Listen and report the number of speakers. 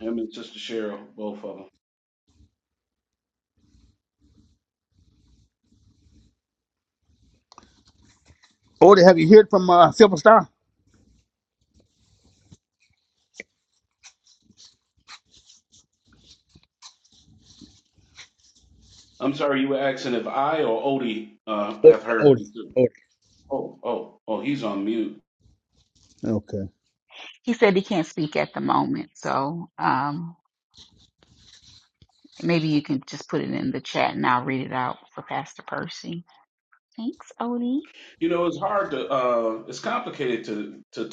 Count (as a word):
three